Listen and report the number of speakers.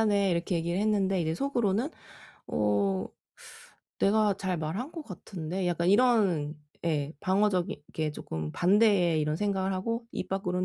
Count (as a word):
one